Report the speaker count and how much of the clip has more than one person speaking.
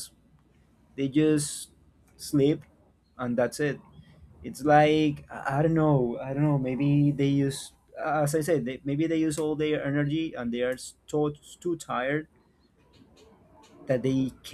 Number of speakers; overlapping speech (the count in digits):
1, no overlap